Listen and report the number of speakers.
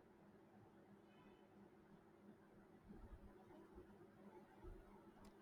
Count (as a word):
zero